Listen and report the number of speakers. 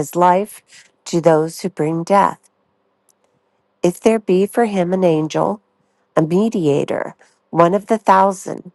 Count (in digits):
1